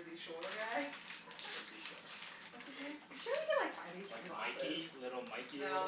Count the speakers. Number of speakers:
3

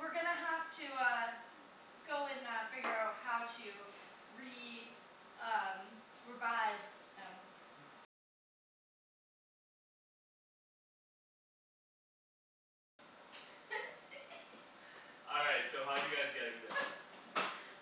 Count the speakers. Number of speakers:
2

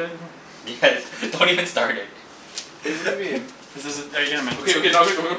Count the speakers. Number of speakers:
3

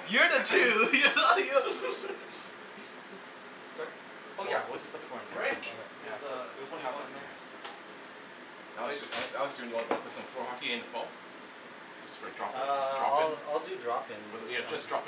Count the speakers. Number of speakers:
4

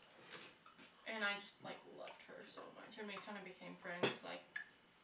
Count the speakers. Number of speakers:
1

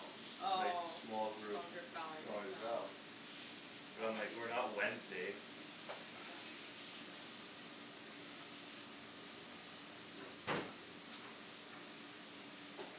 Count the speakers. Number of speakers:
2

